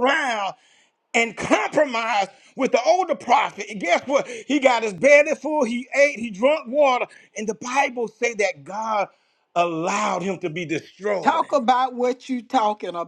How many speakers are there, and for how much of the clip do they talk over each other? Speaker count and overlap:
2, about 3%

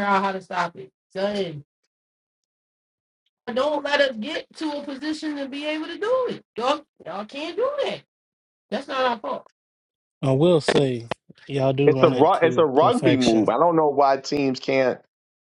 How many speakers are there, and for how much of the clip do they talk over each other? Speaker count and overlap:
3, about 10%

